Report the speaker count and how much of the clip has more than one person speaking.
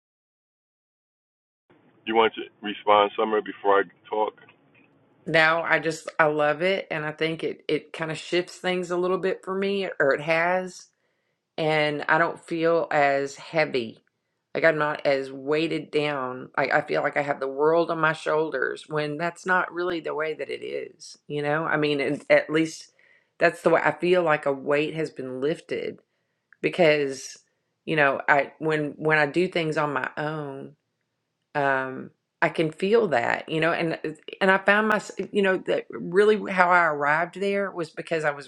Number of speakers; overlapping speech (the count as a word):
two, no overlap